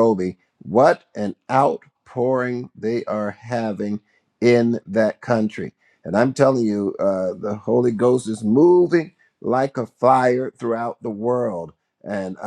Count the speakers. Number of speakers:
1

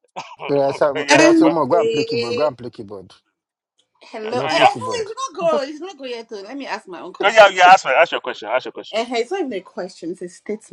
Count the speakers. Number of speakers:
3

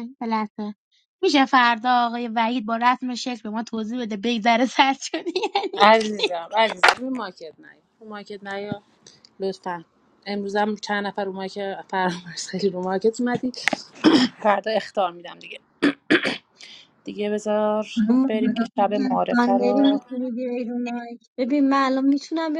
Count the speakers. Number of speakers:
3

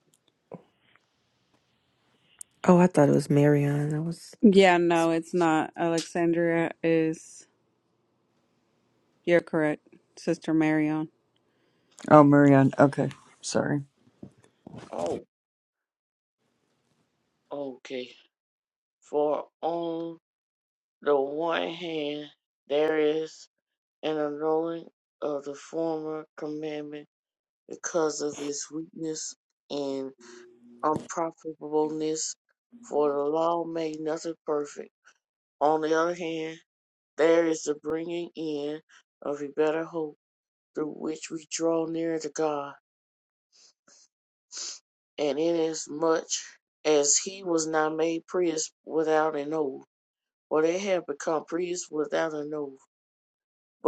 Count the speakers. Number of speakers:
4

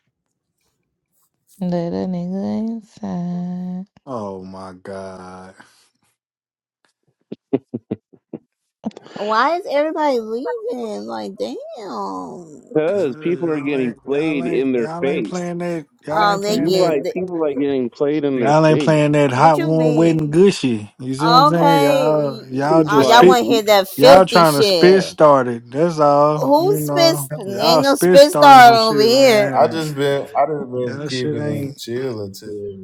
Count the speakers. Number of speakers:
5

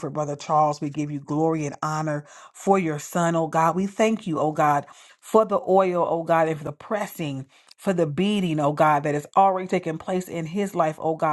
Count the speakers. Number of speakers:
1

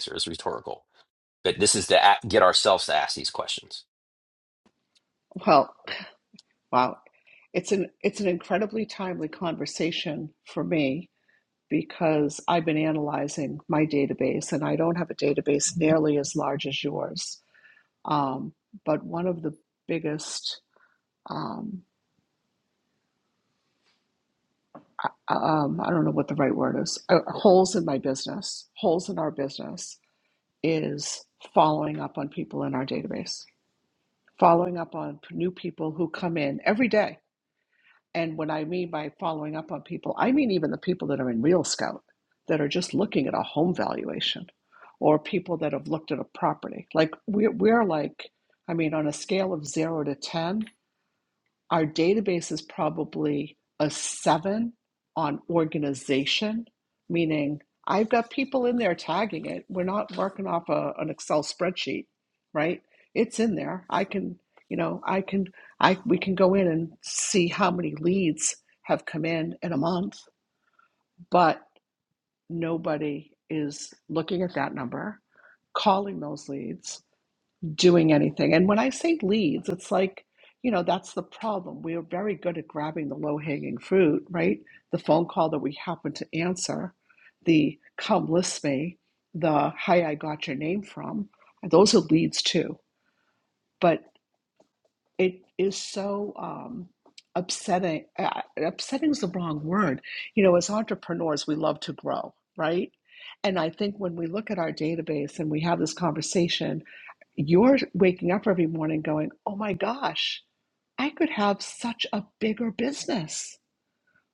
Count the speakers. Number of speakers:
2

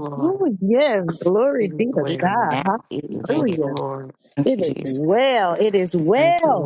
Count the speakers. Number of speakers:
3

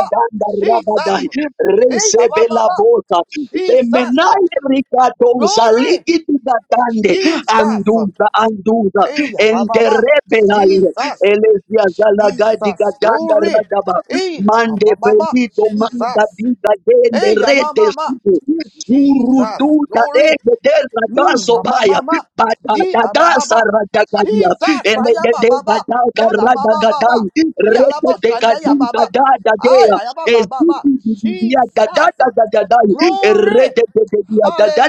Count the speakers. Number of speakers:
2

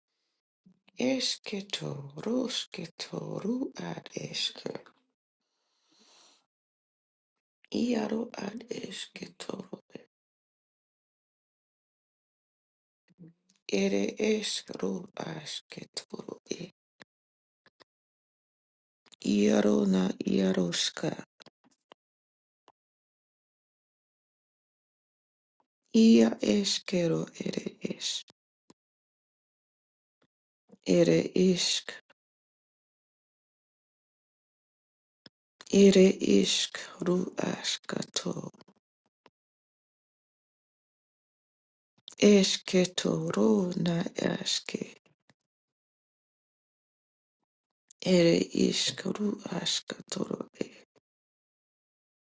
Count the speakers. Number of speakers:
1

